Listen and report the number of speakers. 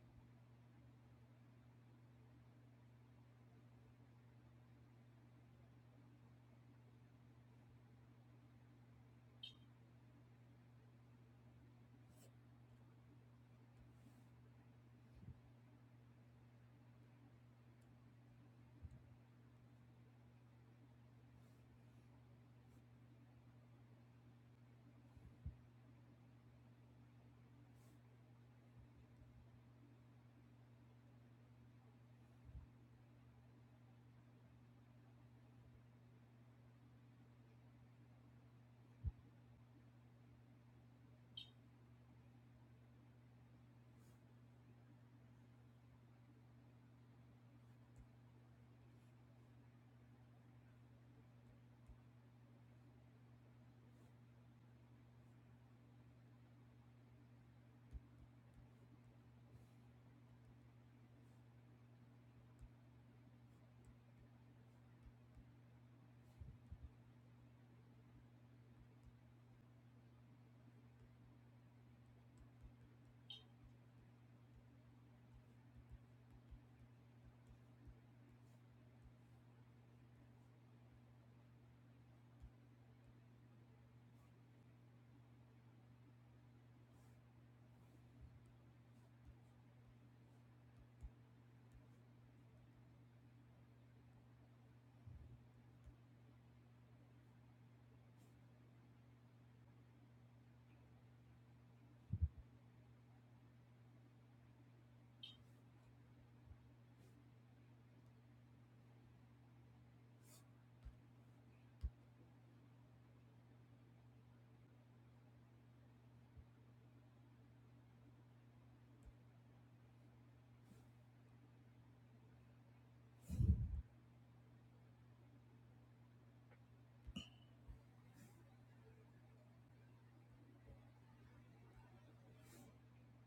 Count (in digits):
0